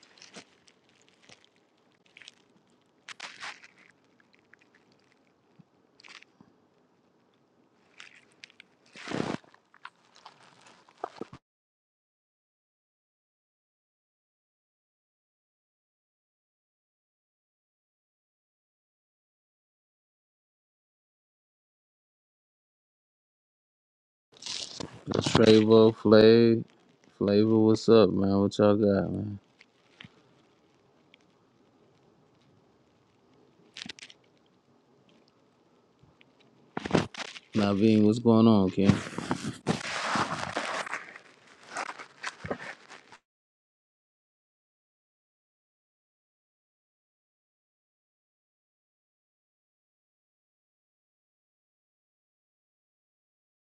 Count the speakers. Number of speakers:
1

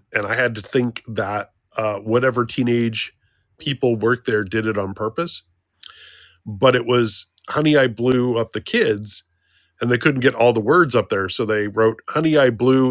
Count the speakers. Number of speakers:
1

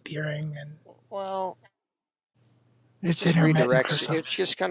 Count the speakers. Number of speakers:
2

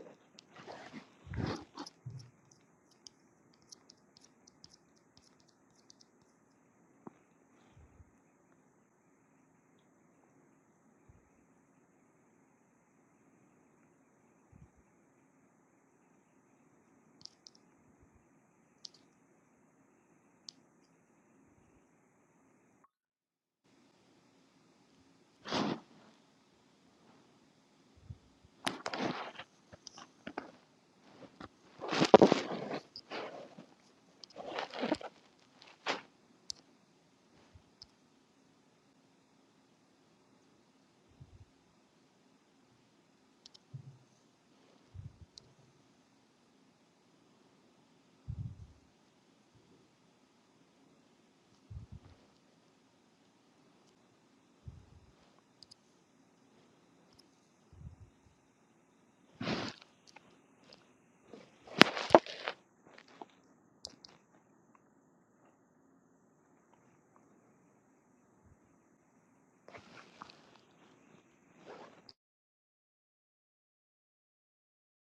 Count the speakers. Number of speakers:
0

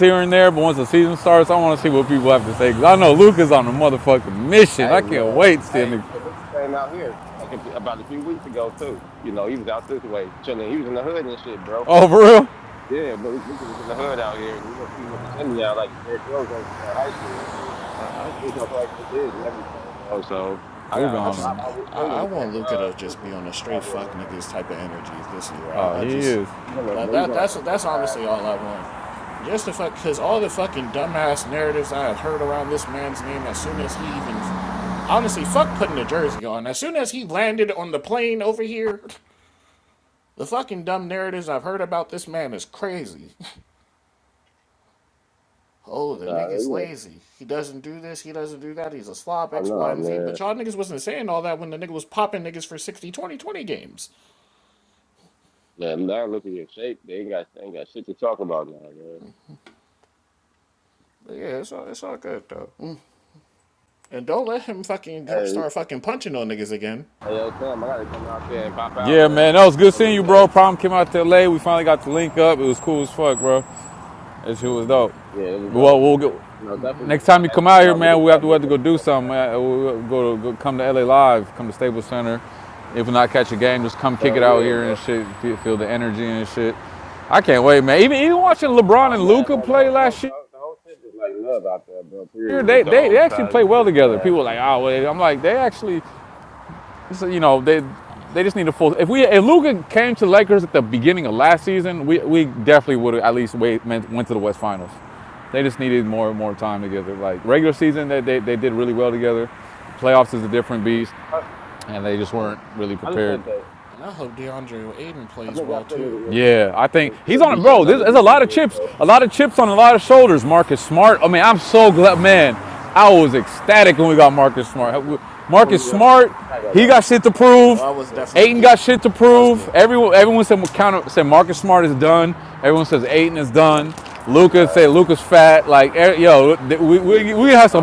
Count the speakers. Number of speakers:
3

